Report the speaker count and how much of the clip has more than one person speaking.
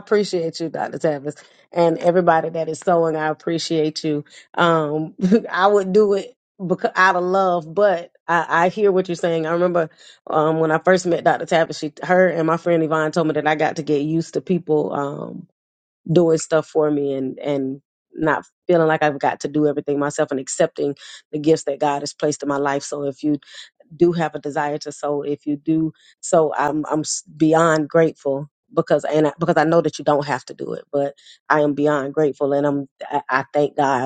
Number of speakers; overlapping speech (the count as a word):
one, no overlap